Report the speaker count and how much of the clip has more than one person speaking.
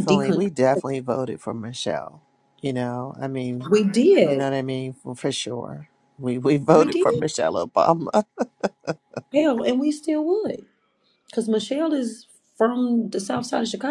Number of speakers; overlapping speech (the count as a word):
two, about 9%